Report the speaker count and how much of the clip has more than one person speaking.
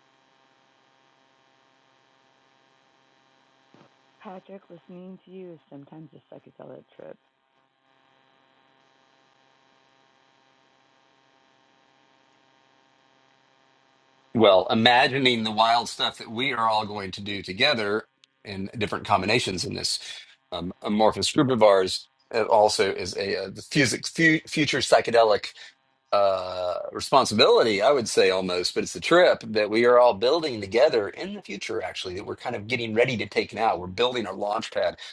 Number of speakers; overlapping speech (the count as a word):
two, no overlap